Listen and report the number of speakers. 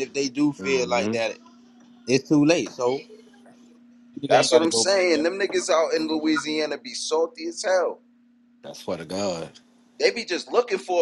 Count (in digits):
3